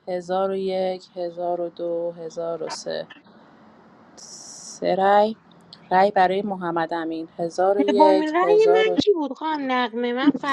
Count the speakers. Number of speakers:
two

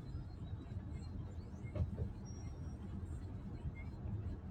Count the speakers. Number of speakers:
zero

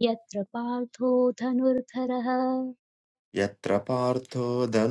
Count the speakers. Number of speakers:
two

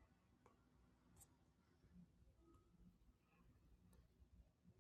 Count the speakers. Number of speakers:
zero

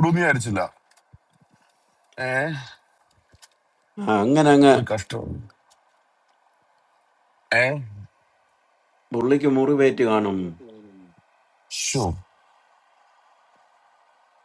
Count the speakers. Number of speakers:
two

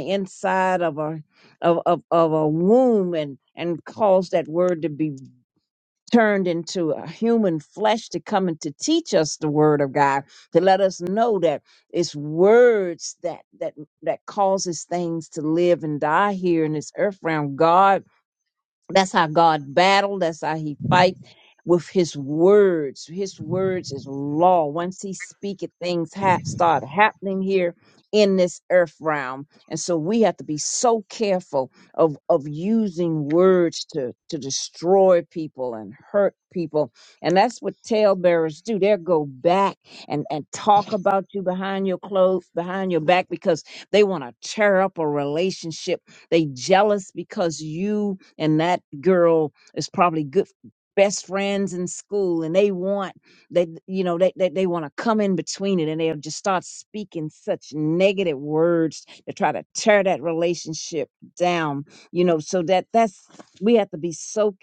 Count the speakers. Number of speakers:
one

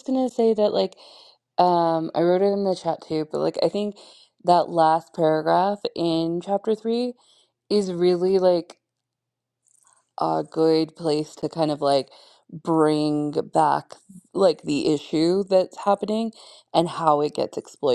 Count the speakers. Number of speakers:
one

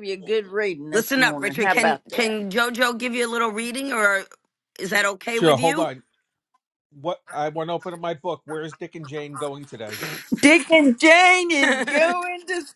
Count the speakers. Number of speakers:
three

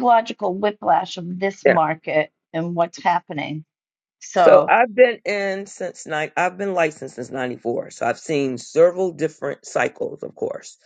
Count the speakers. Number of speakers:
two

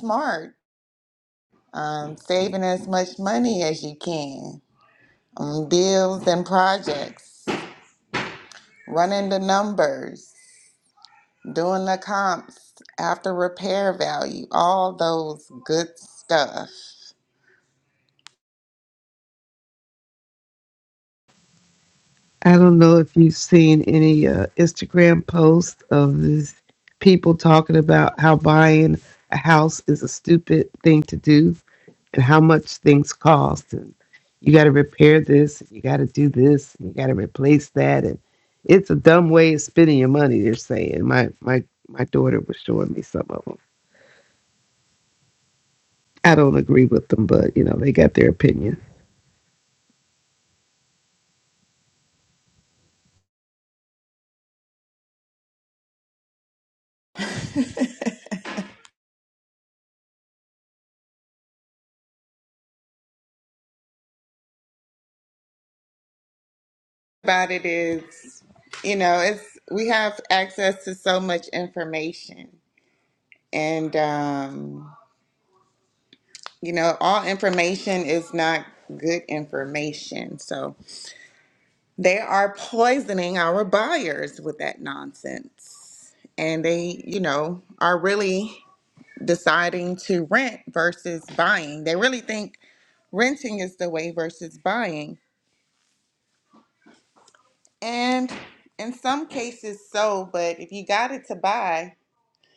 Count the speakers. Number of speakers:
two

